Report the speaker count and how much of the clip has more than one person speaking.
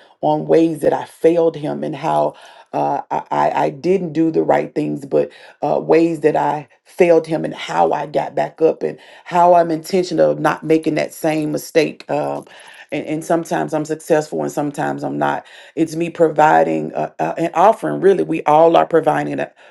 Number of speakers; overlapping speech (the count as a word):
one, no overlap